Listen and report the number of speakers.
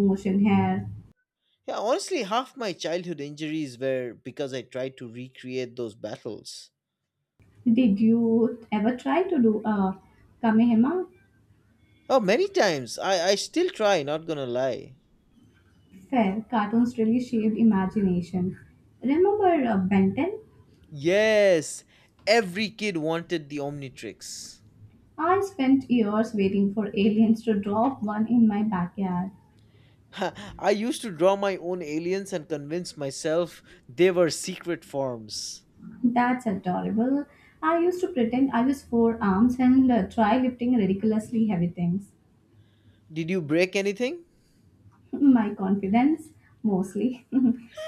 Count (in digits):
2